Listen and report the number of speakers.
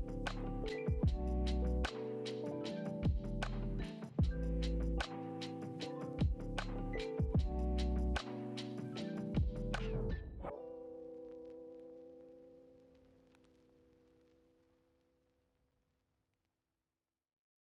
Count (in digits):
0